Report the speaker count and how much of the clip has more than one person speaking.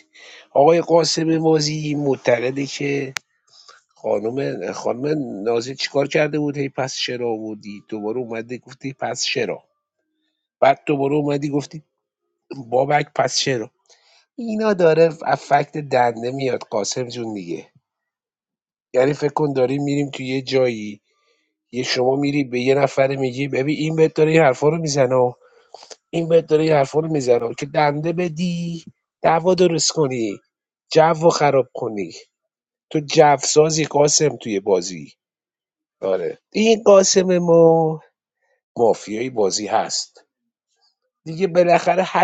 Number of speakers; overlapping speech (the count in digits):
1, no overlap